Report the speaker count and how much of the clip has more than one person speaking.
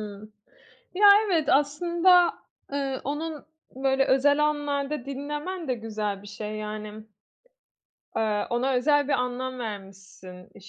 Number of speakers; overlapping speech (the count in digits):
1, no overlap